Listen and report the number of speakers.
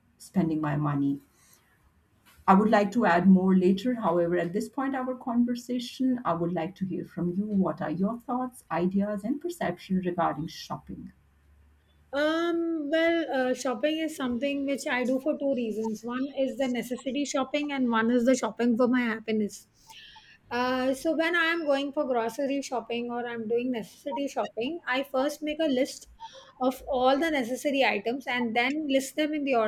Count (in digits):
2